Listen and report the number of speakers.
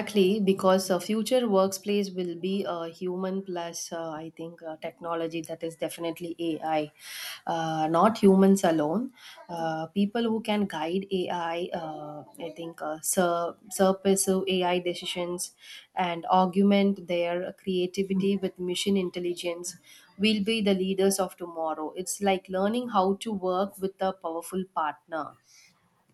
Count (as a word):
one